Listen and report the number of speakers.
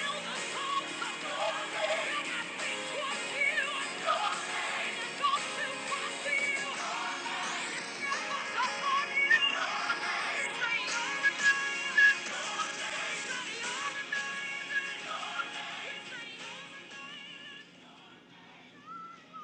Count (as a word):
zero